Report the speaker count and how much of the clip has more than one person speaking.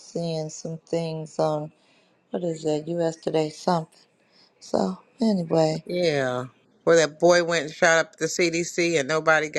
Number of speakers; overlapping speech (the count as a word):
two, no overlap